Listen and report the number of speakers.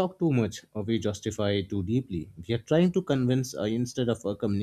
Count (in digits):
1